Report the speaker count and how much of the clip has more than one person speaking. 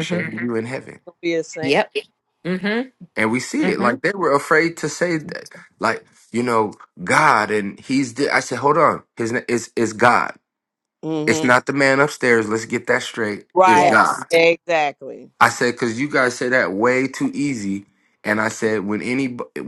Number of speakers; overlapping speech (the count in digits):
3, about 8%